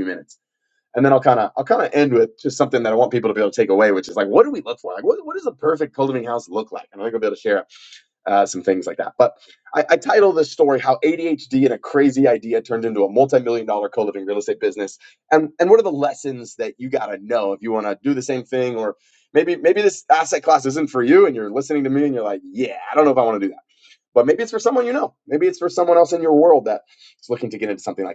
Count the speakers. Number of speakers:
1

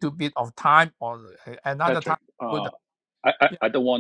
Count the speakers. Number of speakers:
2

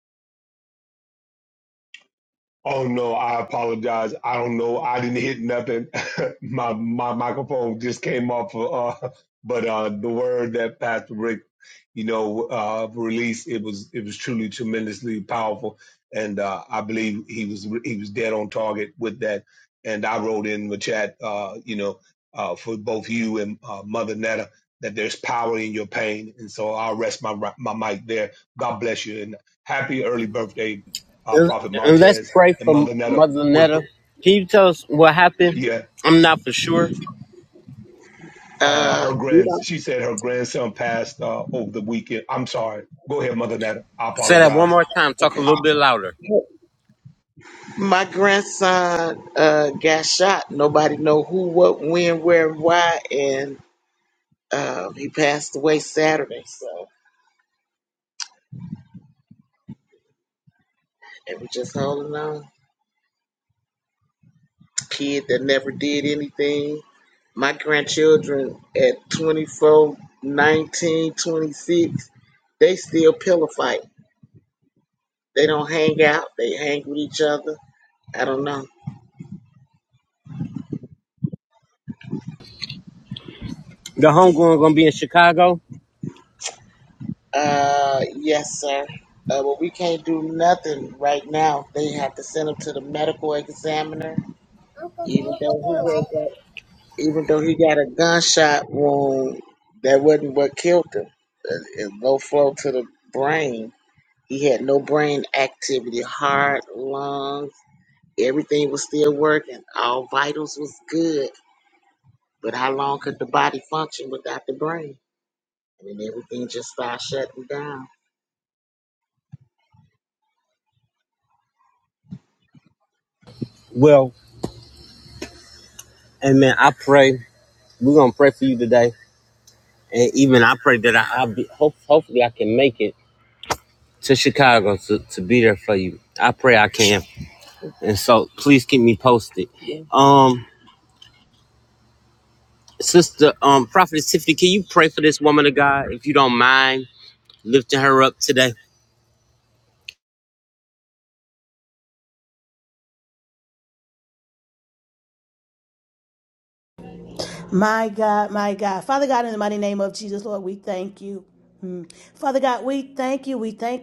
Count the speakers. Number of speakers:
4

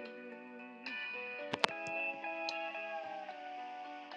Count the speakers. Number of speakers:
0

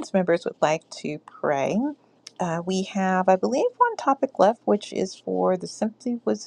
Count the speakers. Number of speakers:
1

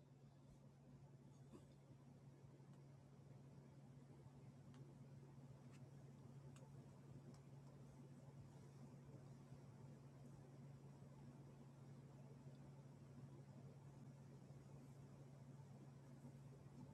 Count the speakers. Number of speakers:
0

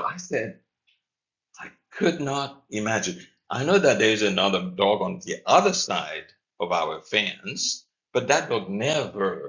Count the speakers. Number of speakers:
1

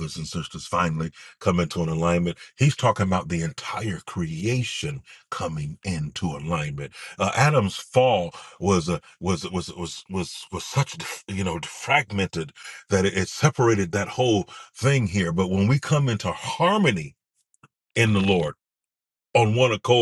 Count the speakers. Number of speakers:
1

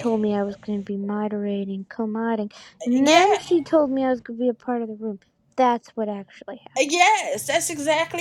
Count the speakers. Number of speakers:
2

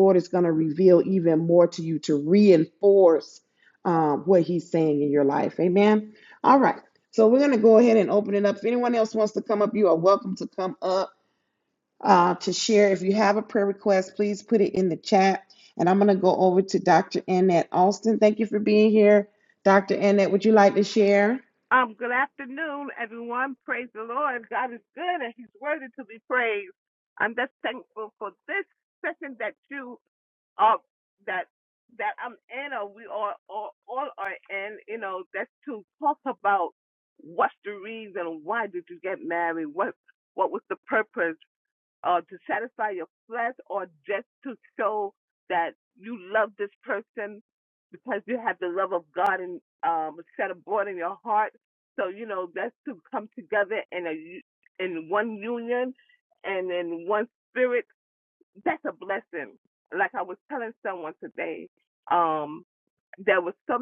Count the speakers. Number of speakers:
2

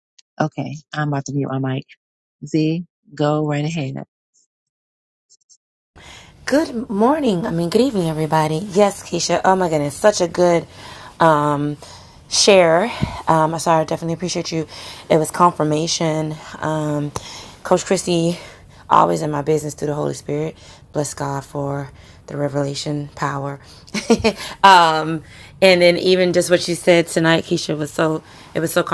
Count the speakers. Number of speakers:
2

